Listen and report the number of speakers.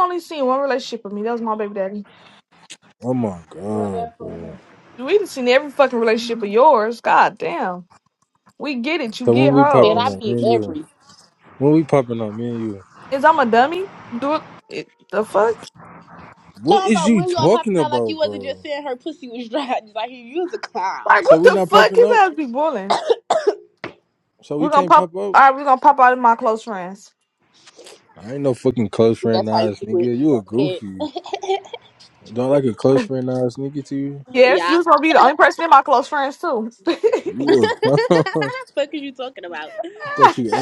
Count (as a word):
three